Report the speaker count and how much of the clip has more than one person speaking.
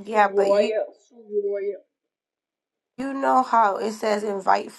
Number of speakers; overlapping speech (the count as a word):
two, about 12%